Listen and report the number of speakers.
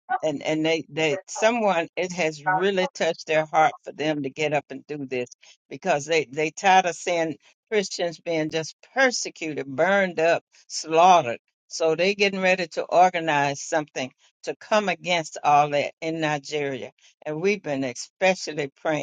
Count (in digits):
1